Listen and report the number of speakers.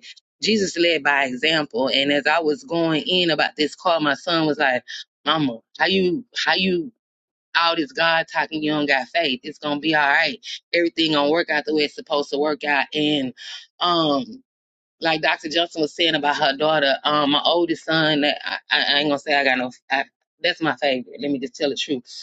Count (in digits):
1